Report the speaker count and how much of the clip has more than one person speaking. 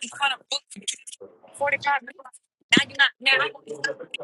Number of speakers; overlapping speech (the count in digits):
1, no overlap